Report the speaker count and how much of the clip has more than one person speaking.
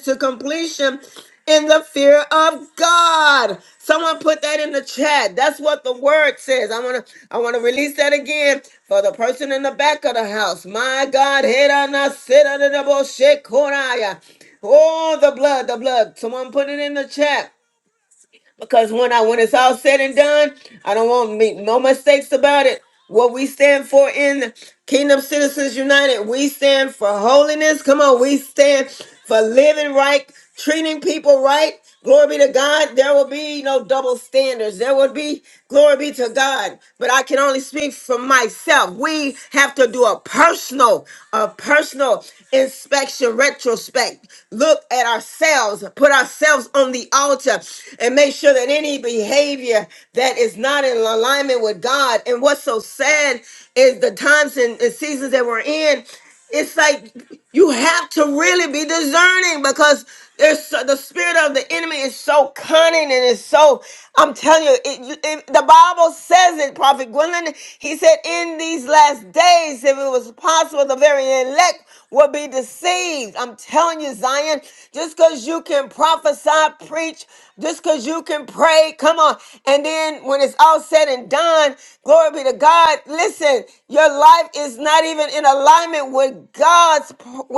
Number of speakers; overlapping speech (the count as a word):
one, no overlap